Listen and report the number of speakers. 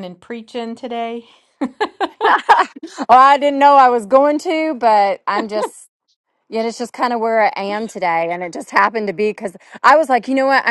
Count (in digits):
2